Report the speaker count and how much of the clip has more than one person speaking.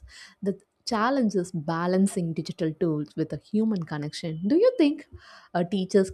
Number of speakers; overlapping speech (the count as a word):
one, no overlap